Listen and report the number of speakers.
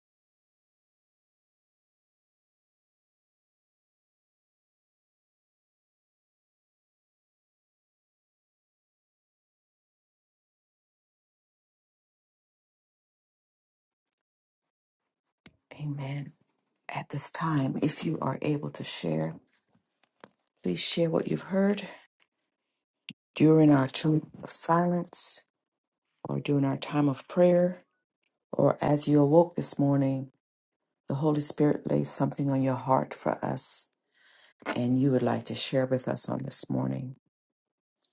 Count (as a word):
one